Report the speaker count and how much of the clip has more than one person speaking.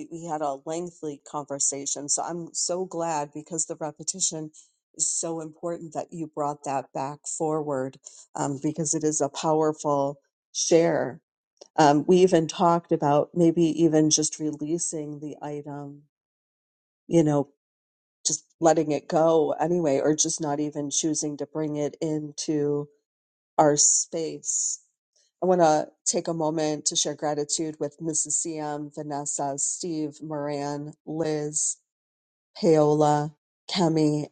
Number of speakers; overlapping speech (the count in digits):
1, no overlap